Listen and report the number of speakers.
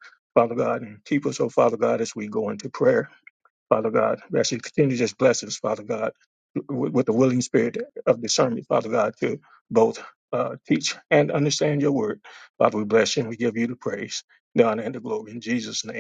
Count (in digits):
1